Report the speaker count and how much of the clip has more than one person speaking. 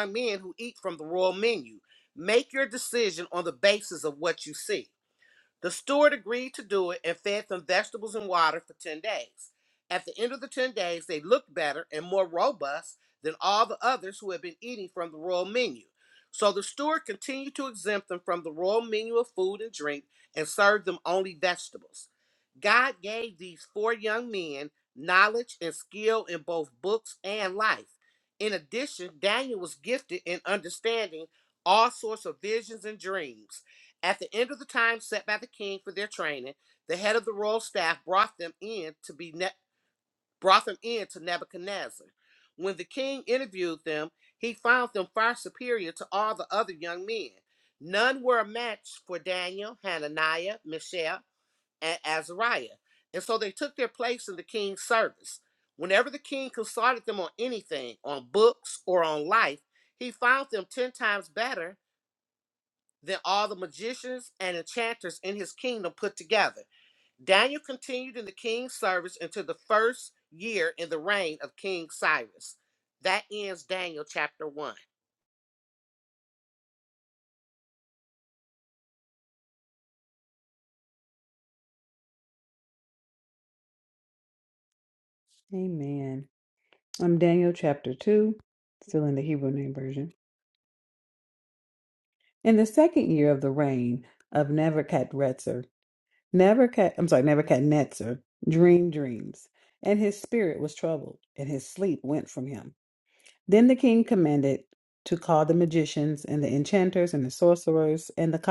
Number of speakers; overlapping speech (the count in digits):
2, no overlap